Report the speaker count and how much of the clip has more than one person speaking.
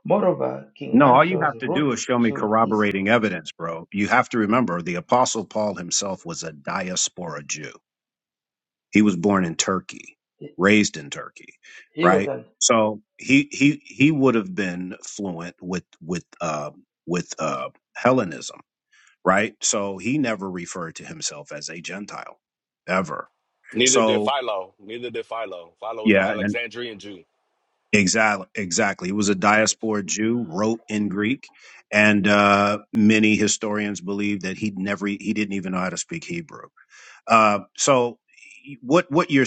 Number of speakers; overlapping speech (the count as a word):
three, about 7%